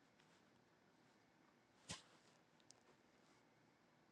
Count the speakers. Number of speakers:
0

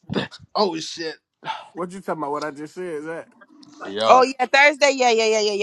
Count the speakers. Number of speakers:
3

